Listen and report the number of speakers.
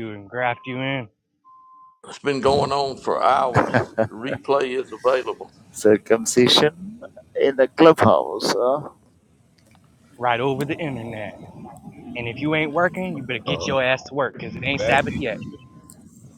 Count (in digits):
3